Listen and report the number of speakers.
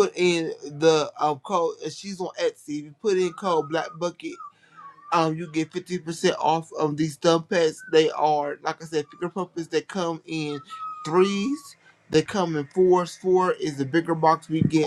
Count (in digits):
1